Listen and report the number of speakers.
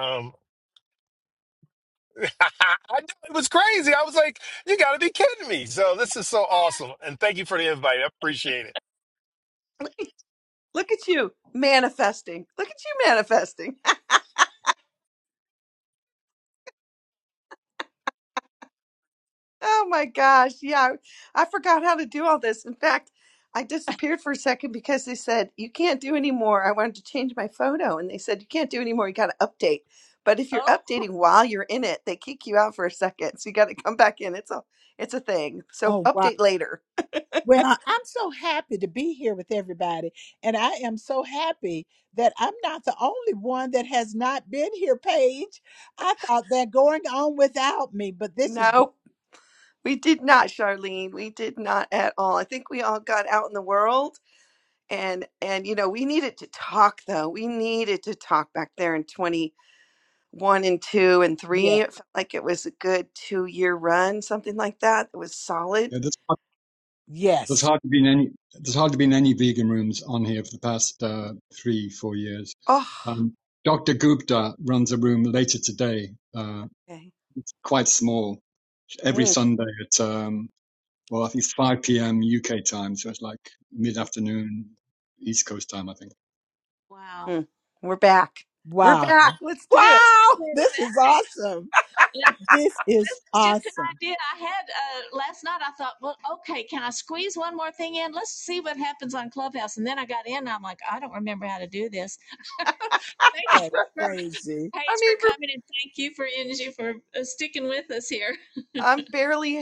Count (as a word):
five